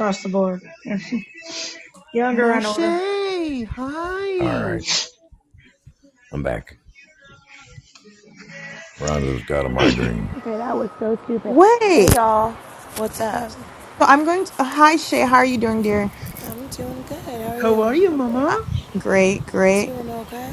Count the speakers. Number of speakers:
five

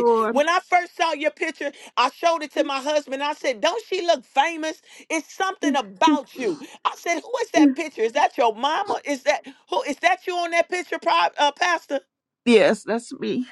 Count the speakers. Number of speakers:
two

